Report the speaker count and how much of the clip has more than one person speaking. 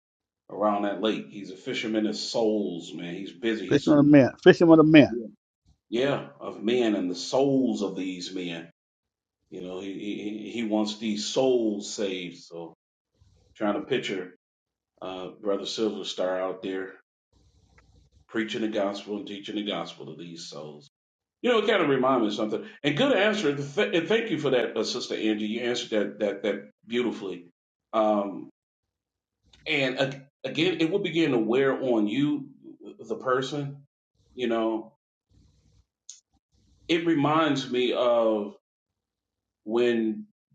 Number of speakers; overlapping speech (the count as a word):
two, about 1%